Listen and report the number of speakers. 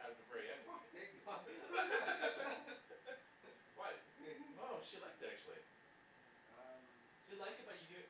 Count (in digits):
3